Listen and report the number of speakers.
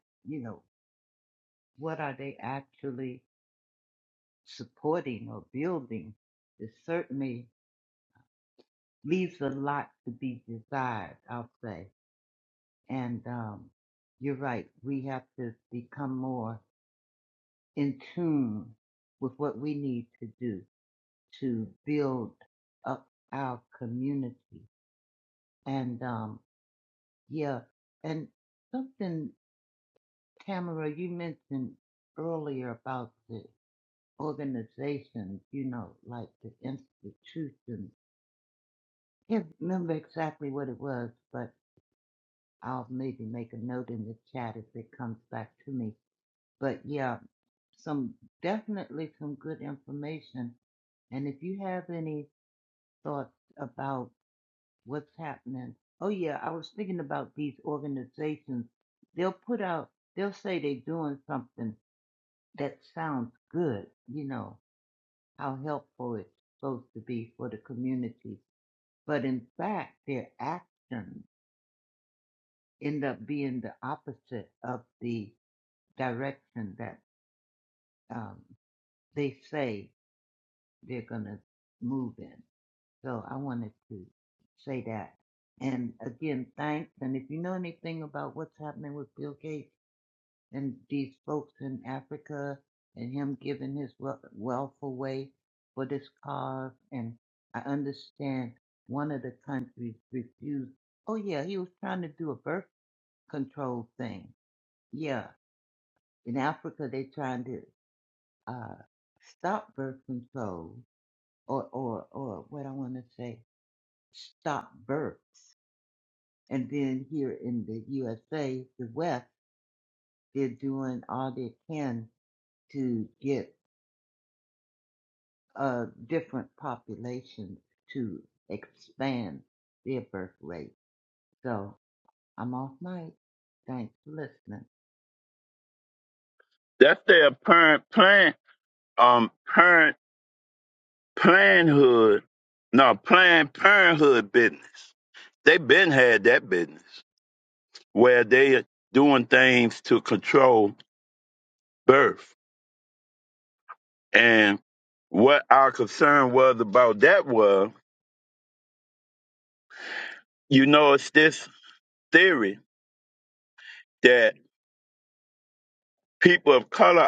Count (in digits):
2